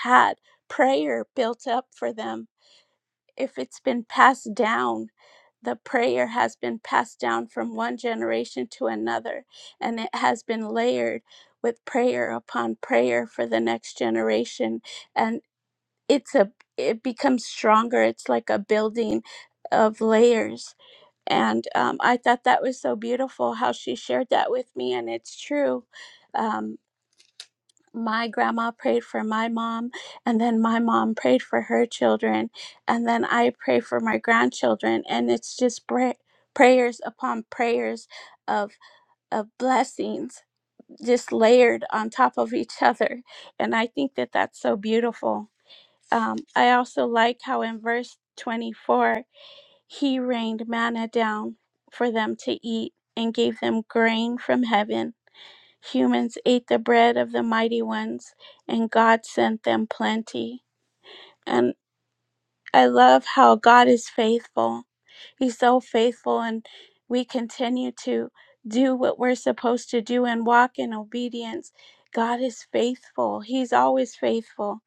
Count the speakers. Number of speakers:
1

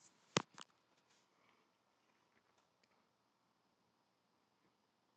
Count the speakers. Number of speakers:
0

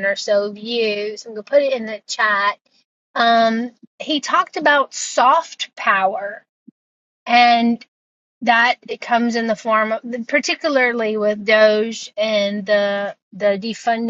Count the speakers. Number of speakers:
1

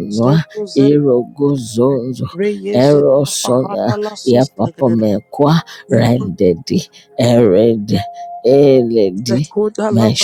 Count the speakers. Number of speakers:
2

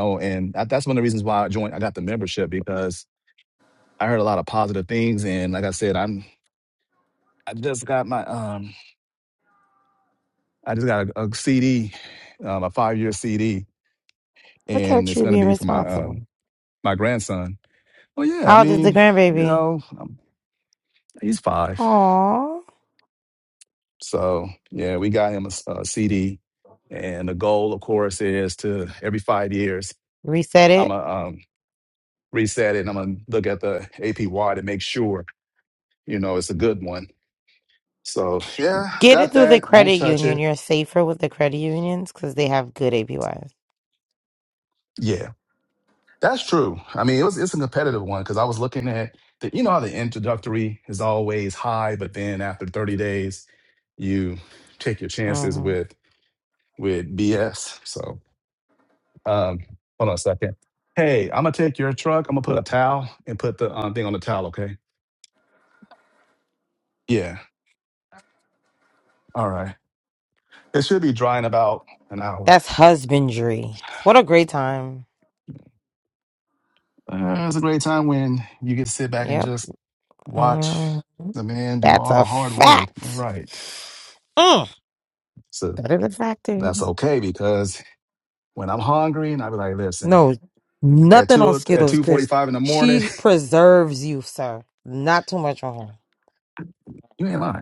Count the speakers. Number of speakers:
2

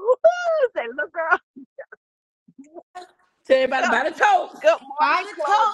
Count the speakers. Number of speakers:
2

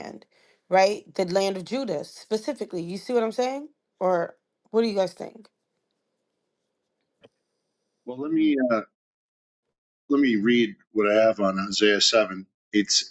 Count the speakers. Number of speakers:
2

